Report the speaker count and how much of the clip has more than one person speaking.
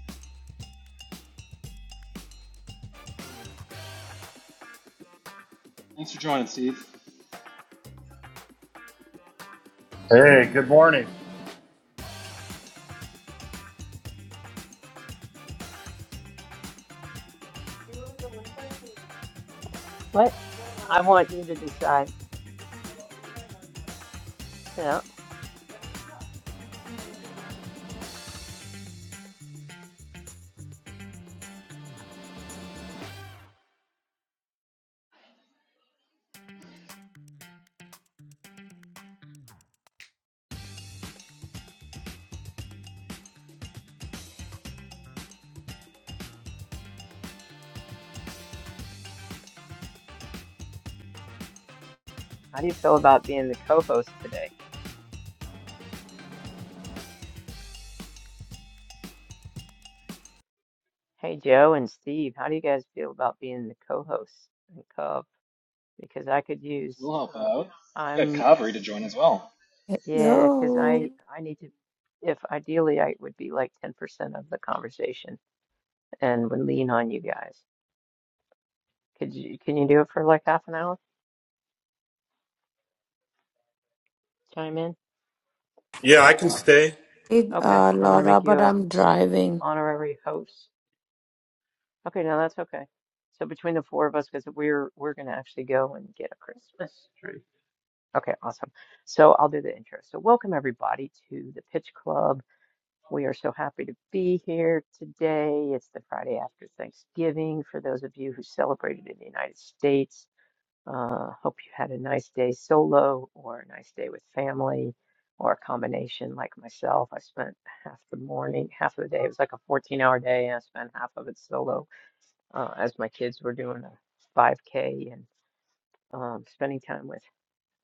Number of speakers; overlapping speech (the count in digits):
4, about 2%